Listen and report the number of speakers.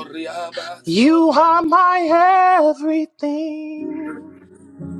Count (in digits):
2